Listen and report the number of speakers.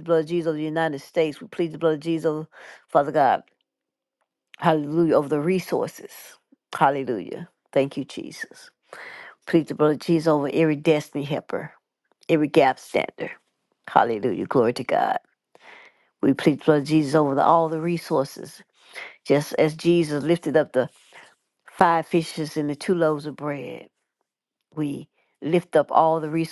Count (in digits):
1